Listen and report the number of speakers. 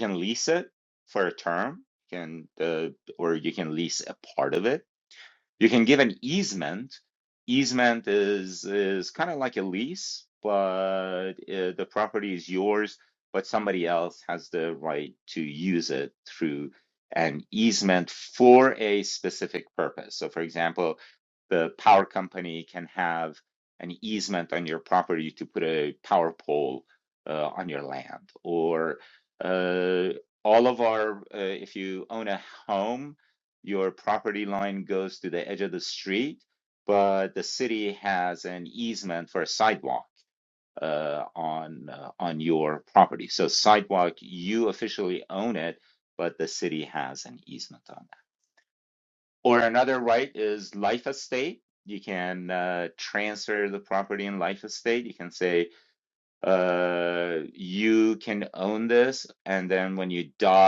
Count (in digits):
1